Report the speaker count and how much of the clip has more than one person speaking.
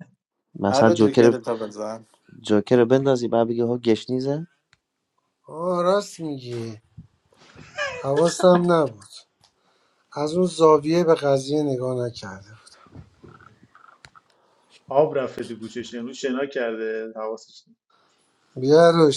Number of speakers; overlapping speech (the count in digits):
4, about 3%